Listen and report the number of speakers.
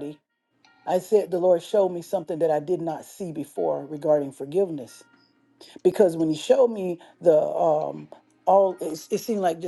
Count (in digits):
1